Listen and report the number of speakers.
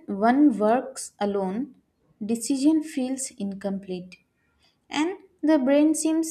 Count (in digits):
1